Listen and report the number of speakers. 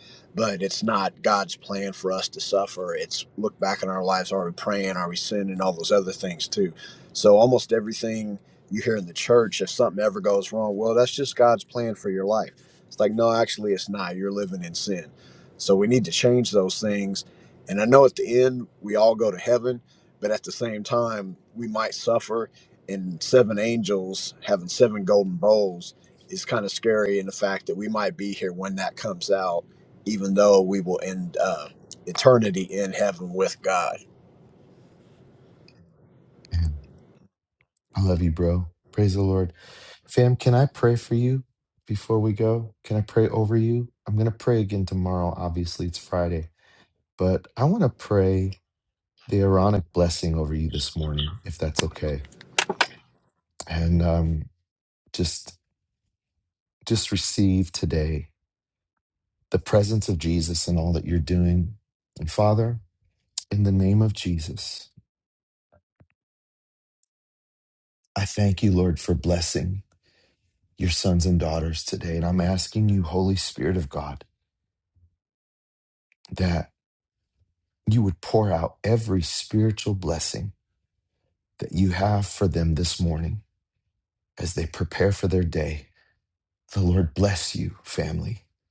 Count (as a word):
two